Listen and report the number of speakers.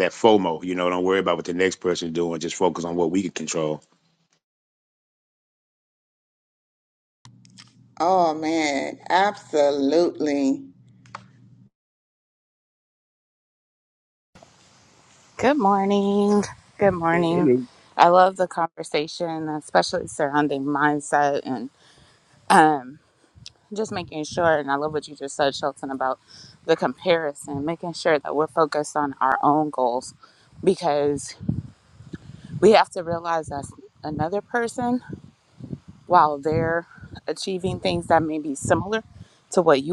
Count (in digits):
3